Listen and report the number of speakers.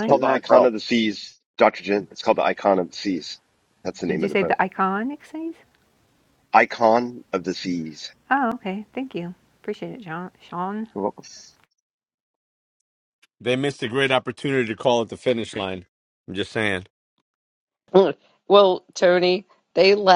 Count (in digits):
4